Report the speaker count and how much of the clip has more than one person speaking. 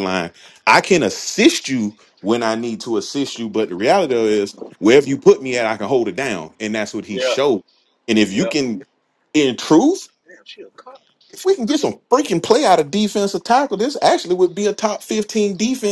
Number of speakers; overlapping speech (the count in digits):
2, about 3%